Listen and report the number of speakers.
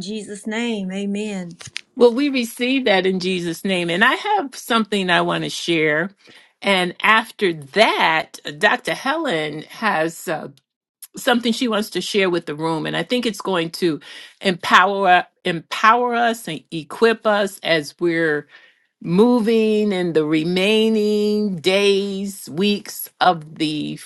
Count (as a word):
two